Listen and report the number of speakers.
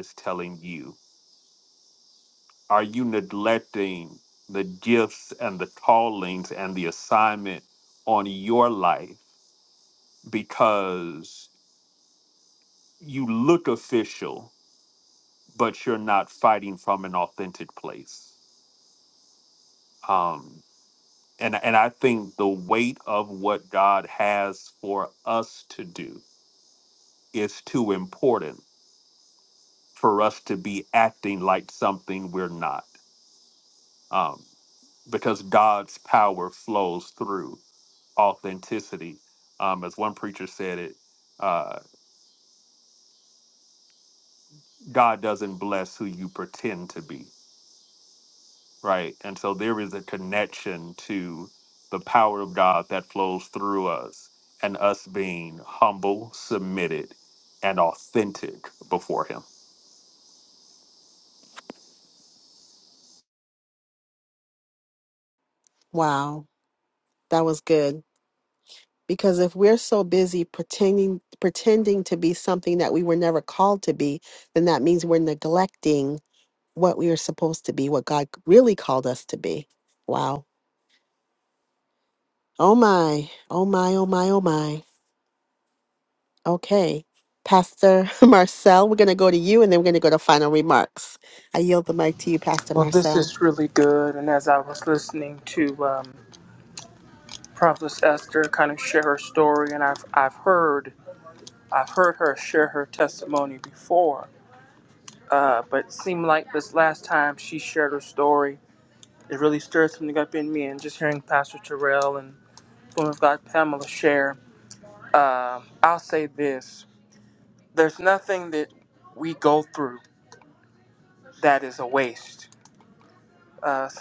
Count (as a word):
three